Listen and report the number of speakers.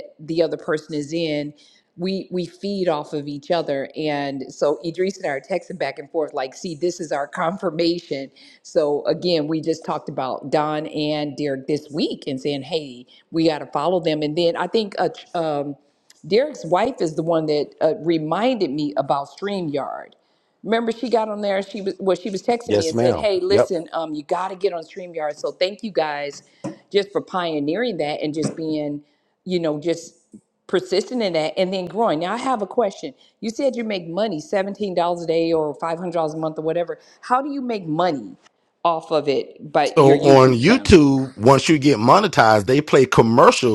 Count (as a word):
two